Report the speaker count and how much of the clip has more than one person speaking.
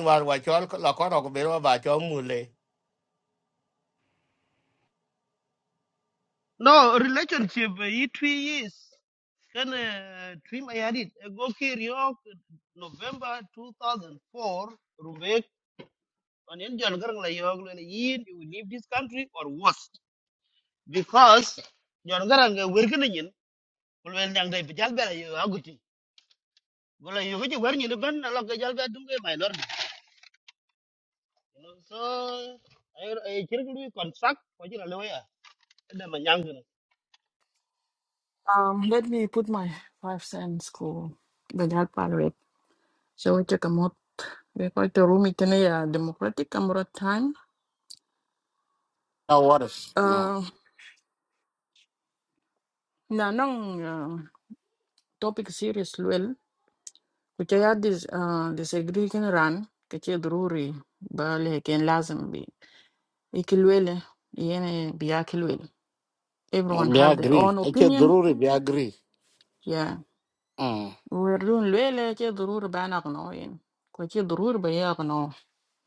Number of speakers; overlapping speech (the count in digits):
4, about 2%